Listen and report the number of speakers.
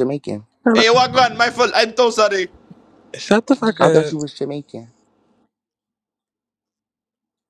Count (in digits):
3